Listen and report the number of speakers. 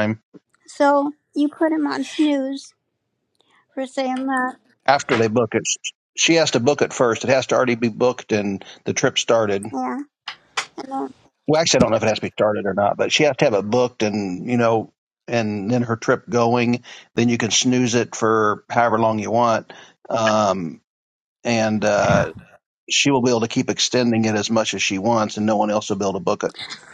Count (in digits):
2